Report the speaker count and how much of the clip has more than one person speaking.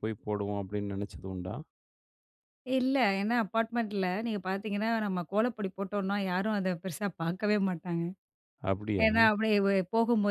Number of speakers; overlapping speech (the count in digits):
2, about 1%